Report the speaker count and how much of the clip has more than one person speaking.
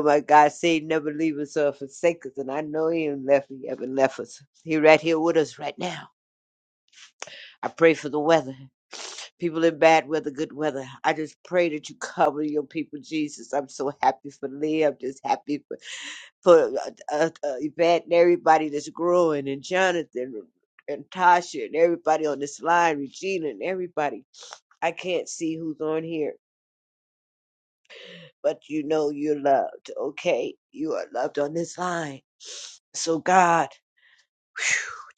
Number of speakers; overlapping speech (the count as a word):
one, no overlap